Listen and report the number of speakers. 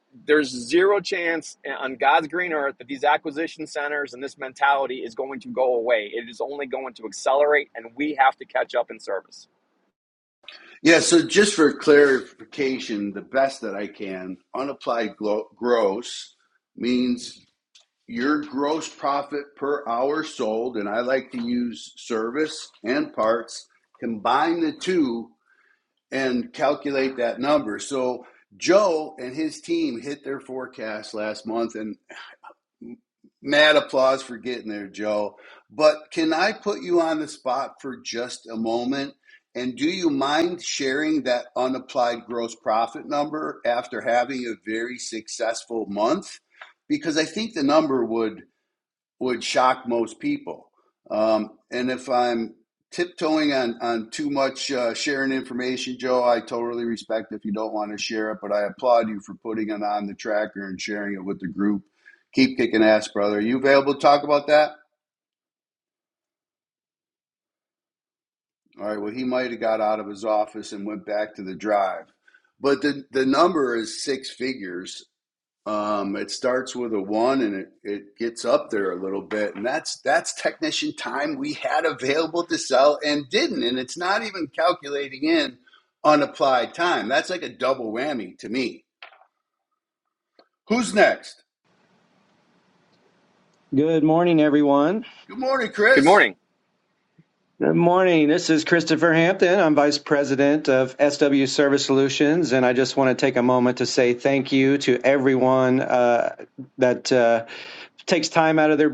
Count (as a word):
three